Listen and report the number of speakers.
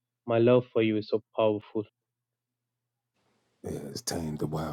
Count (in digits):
2